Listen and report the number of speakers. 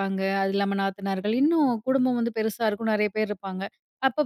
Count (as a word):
one